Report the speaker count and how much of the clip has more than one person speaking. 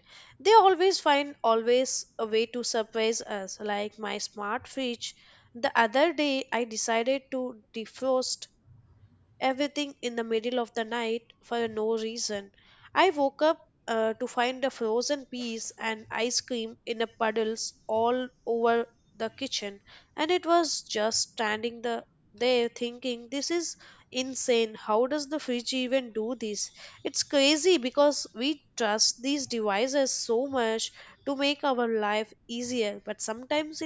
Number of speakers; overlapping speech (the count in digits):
1, no overlap